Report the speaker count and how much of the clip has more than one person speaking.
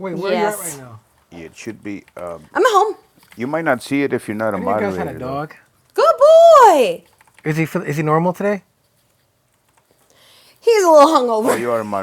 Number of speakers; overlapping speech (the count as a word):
three, about 15%